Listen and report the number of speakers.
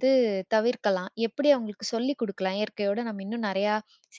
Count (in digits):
1